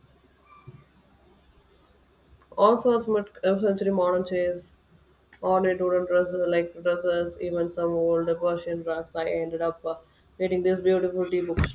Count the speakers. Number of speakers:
1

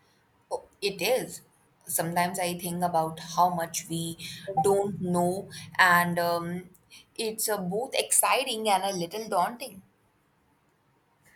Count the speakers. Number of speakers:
1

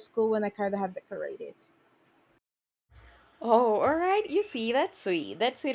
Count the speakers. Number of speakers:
2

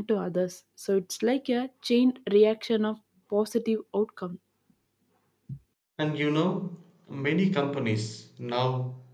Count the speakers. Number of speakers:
2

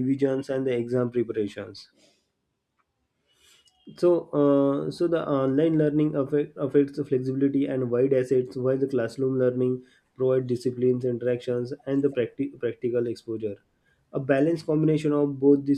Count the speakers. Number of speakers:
1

